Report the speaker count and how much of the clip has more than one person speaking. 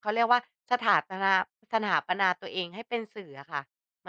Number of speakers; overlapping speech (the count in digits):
1, no overlap